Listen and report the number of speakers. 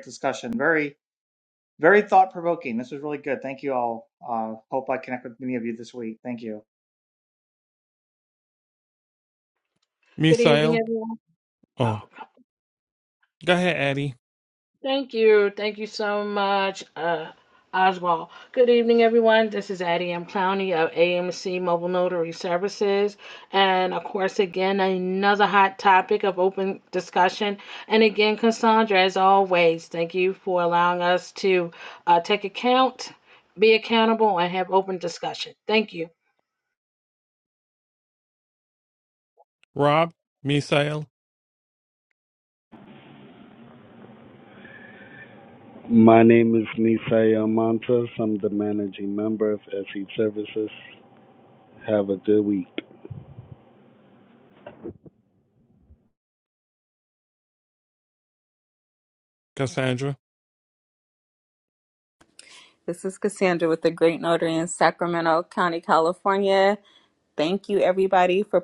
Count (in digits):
5